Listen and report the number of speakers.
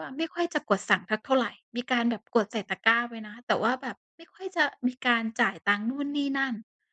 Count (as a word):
one